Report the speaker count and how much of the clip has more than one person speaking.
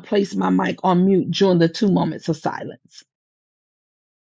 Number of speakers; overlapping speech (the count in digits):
1, no overlap